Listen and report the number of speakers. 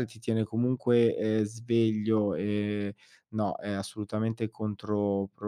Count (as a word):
one